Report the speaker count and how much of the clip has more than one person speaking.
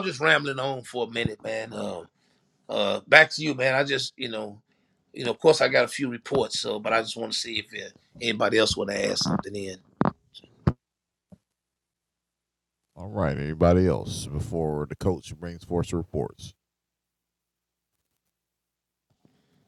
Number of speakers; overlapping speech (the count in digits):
2, no overlap